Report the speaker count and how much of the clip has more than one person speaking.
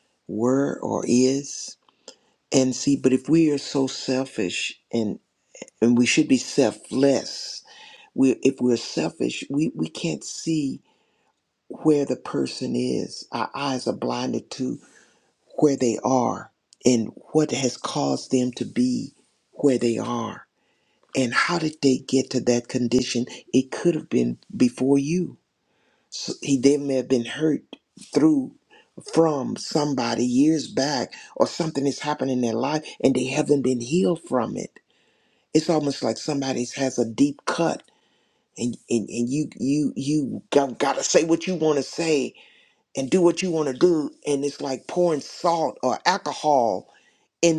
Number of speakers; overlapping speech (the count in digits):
1, no overlap